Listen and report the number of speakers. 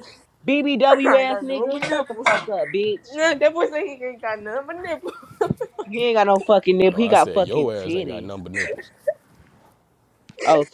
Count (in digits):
3